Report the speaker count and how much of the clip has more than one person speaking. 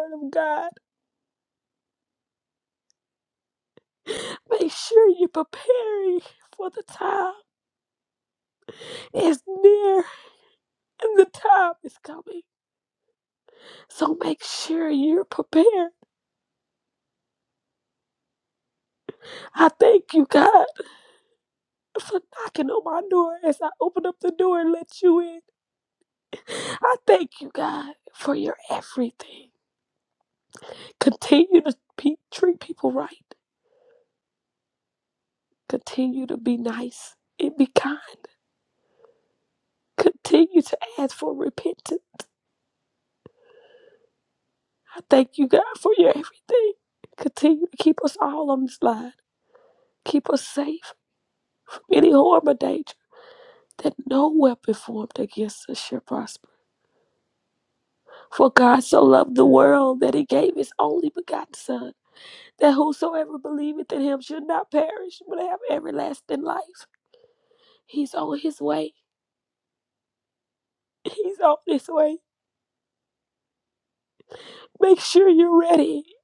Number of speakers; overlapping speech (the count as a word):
one, no overlap